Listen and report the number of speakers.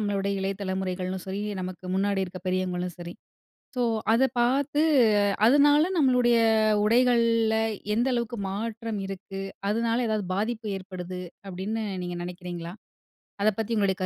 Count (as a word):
one